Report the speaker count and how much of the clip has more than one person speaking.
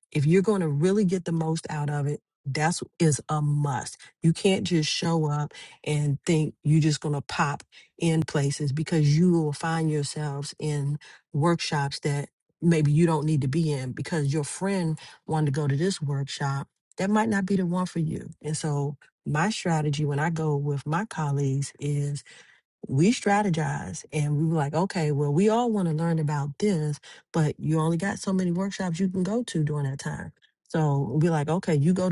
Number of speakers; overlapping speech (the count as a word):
one, no overlap